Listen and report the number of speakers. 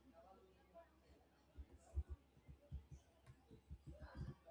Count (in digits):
0